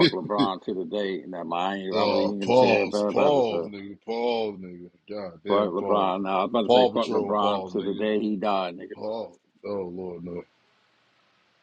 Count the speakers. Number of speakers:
two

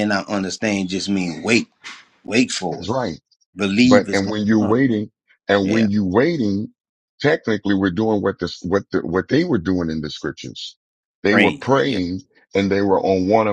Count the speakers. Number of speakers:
two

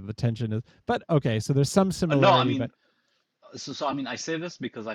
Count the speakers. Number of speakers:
two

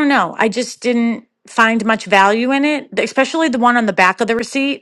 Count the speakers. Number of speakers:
one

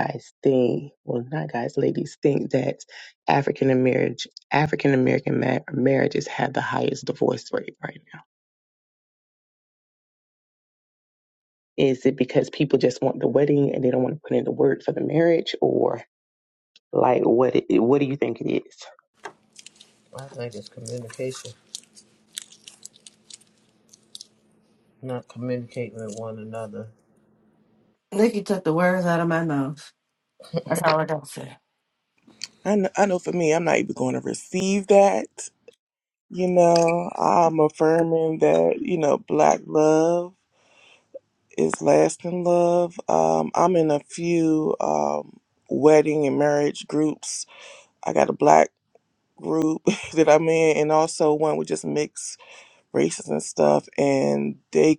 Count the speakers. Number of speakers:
four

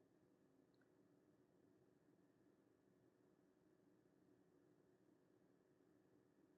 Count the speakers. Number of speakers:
zero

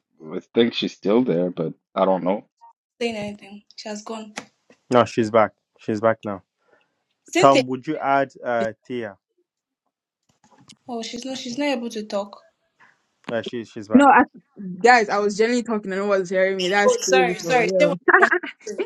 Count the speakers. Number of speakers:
four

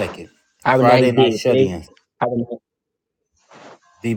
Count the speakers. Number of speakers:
two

